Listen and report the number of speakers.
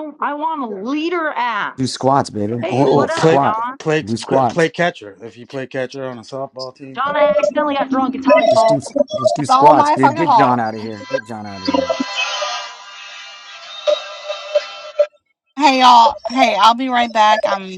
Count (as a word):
four